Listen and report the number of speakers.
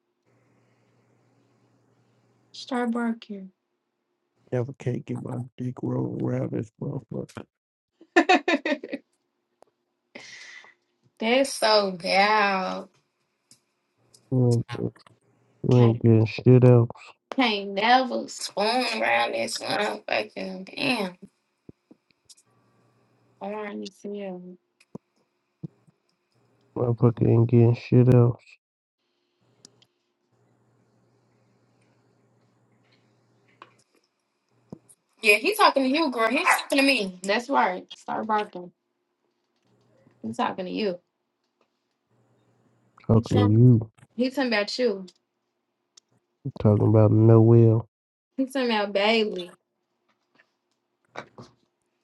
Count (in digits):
2